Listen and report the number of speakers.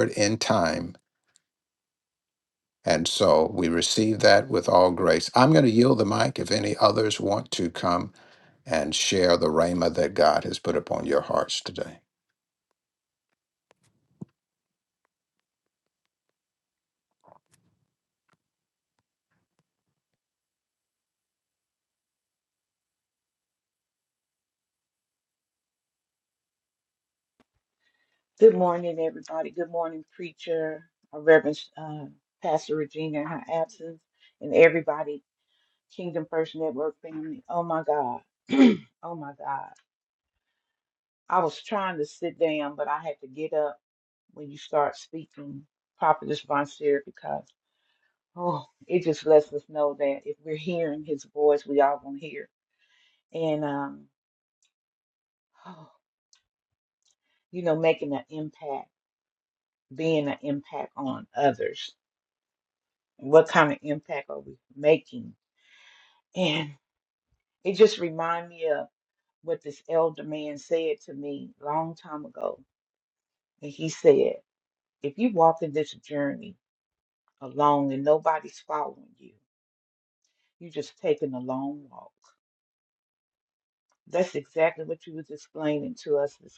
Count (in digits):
2